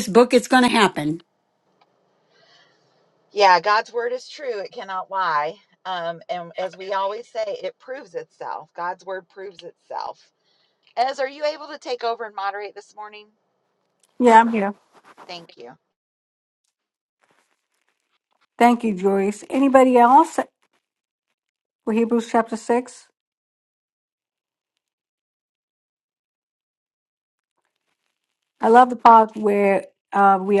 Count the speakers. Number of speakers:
three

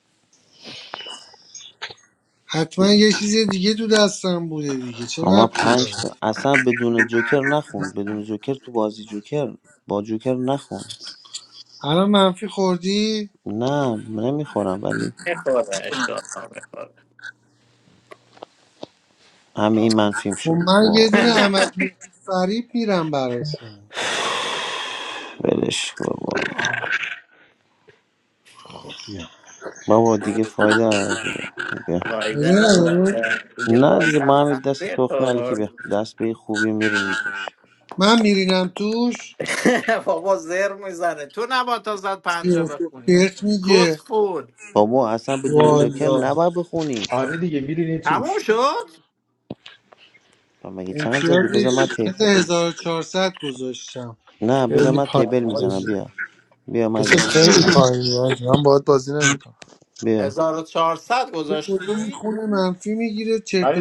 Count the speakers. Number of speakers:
five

